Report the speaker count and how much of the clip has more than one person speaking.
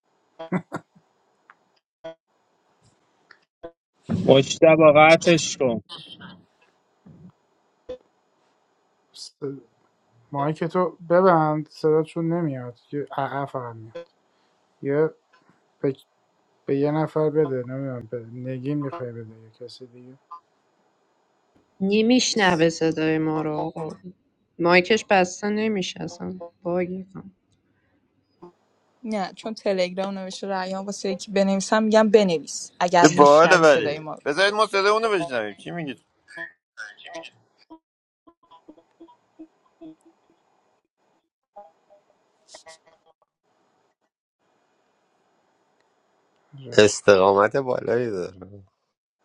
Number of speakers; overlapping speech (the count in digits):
6, about 3%